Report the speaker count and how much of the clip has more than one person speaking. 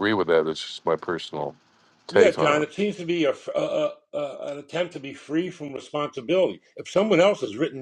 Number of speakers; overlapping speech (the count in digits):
2, about 7%